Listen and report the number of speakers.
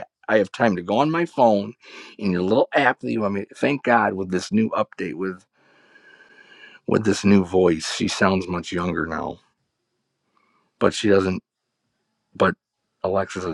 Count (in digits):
1